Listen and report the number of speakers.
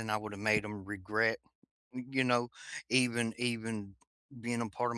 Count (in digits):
1